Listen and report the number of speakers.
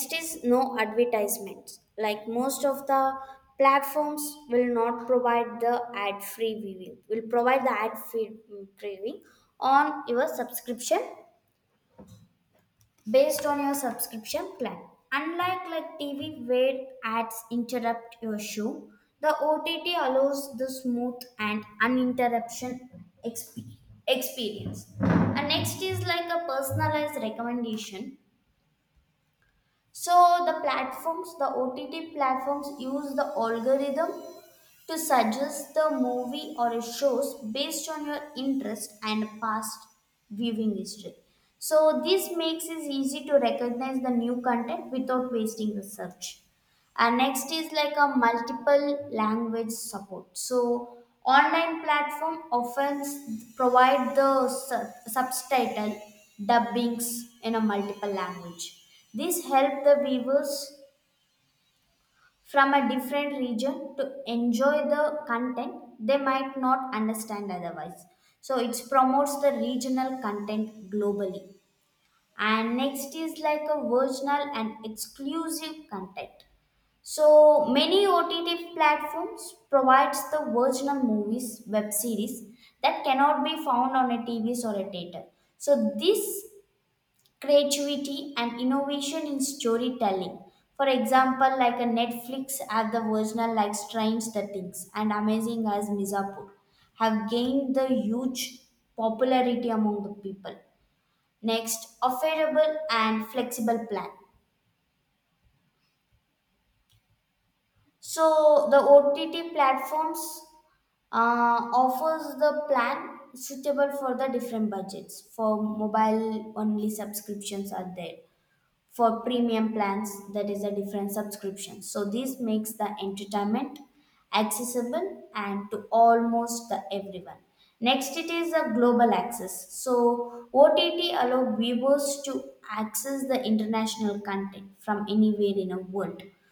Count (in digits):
1